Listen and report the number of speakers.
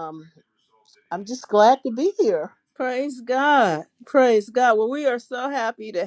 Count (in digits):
2